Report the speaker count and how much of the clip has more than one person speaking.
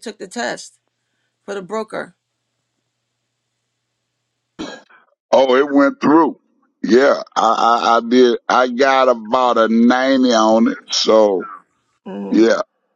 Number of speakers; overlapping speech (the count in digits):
2, about 1%